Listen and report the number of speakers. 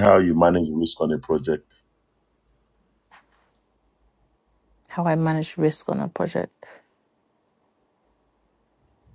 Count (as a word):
two